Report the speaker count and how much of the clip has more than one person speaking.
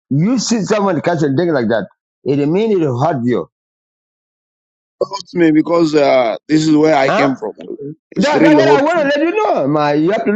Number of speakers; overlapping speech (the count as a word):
two, about 12%